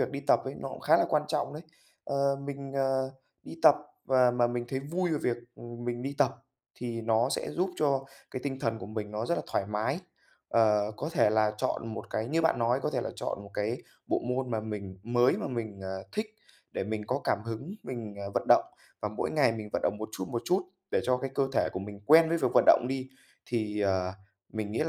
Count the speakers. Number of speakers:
one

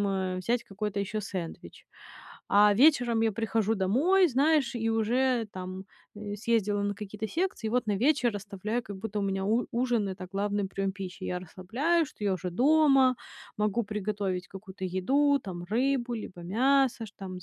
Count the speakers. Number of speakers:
one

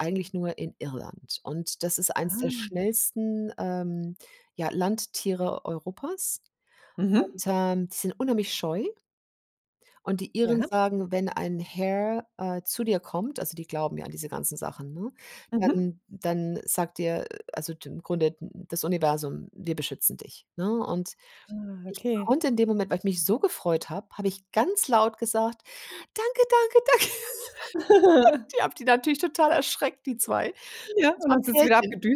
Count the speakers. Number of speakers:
two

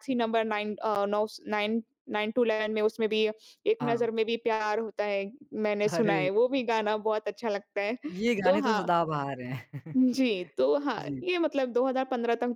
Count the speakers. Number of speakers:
two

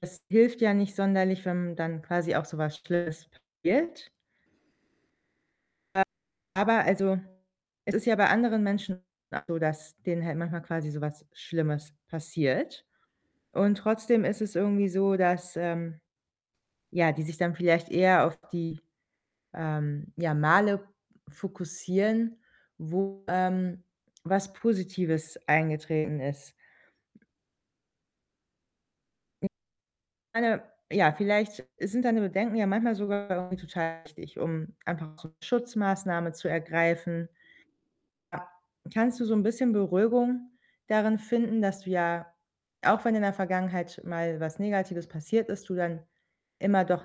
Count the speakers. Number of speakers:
one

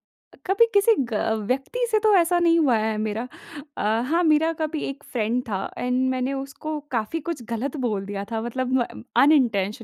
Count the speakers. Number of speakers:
one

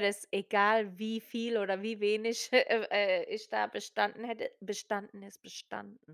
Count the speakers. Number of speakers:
one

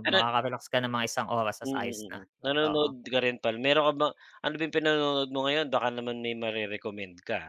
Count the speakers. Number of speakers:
two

